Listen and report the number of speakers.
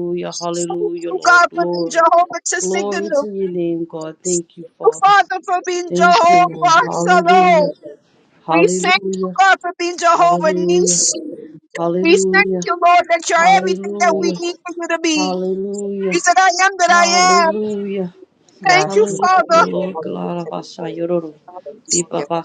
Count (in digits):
3